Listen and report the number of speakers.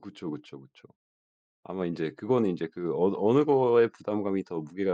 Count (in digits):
1